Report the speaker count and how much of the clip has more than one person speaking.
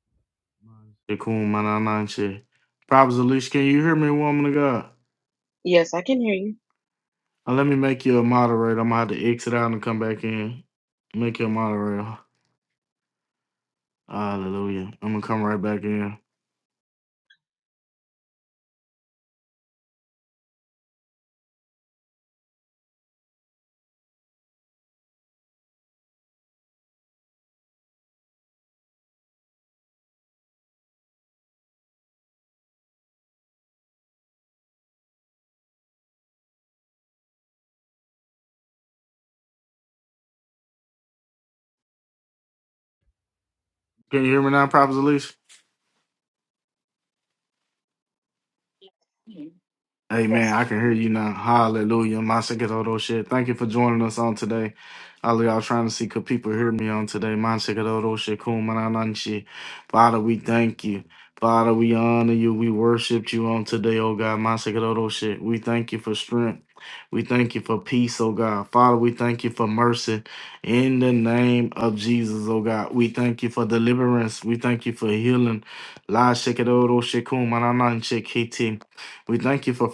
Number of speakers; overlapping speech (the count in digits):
2, about 1%